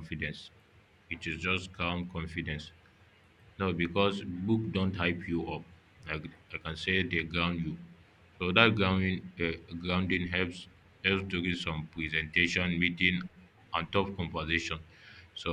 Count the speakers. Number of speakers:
1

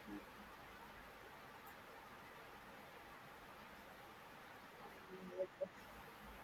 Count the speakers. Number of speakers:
0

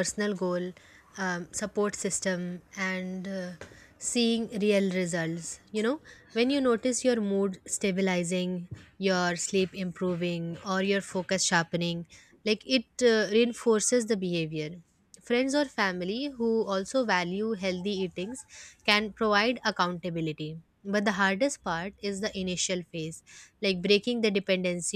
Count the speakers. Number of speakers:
1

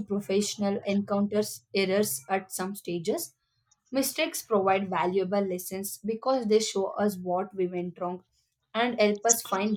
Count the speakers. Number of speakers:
1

